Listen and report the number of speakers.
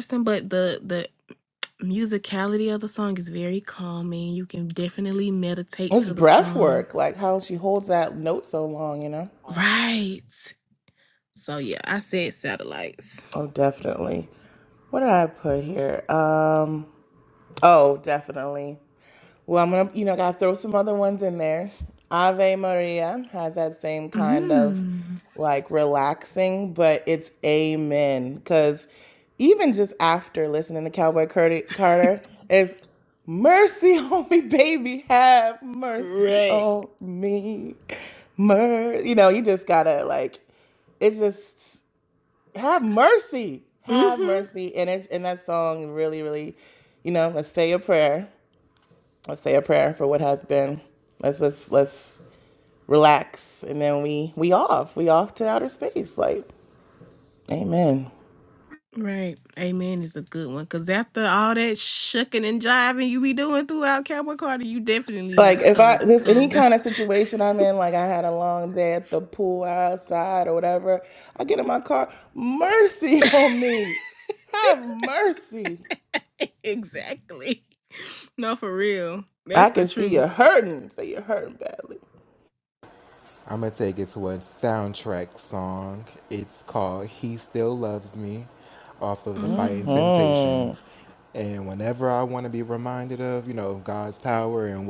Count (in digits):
3